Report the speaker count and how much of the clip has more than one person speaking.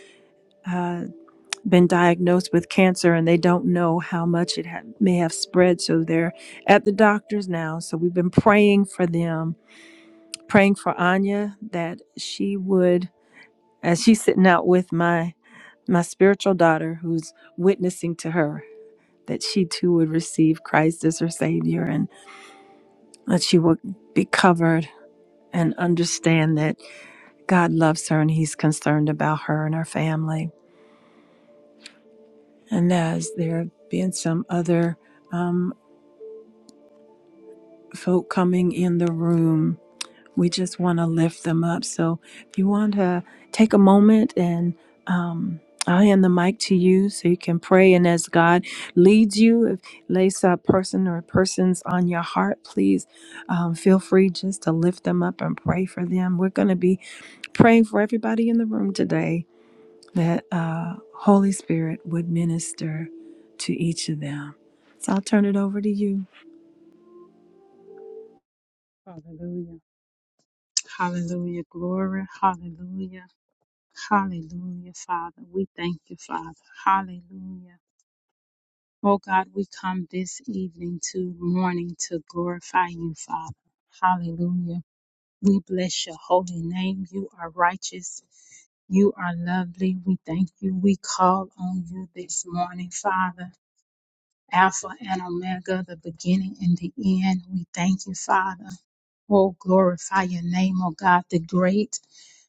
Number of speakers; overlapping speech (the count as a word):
two, no overlap